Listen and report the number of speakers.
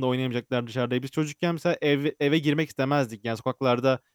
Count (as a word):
one